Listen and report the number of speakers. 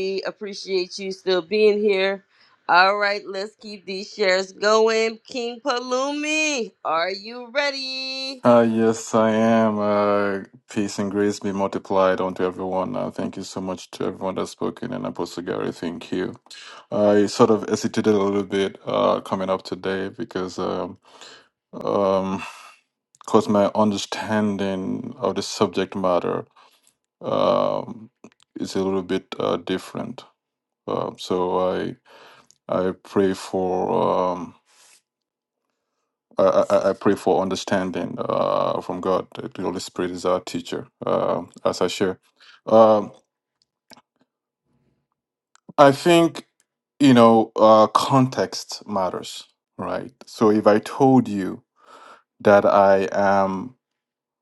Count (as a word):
two